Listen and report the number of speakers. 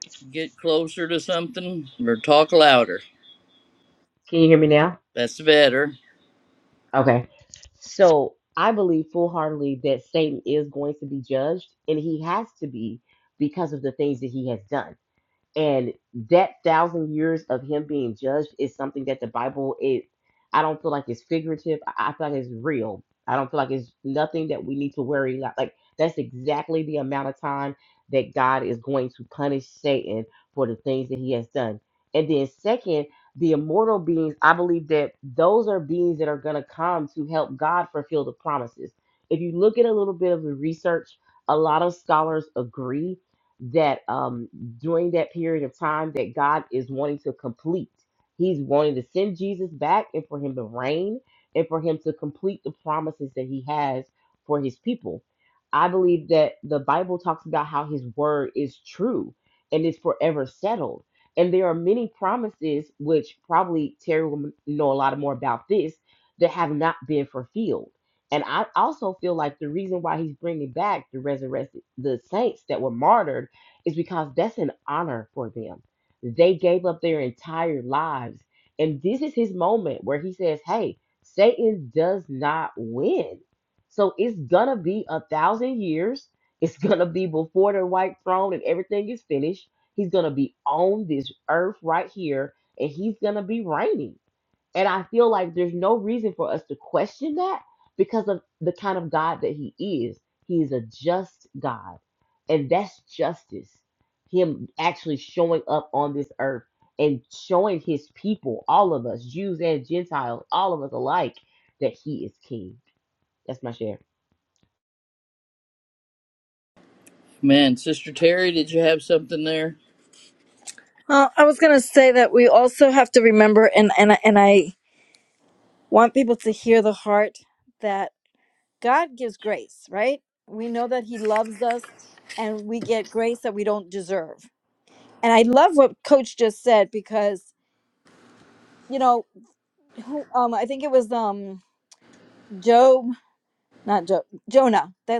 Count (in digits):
3